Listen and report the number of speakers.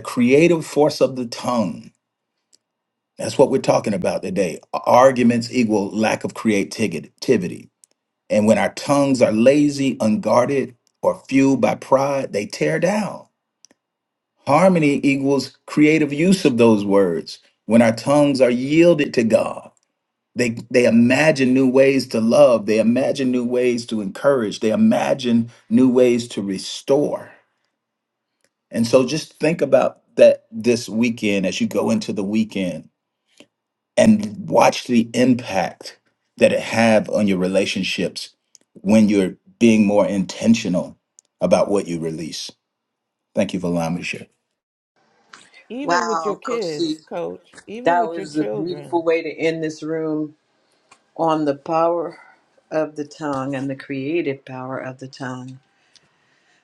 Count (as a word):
three